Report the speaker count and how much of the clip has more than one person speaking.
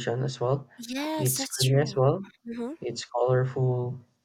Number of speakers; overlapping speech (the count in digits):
2, about 19%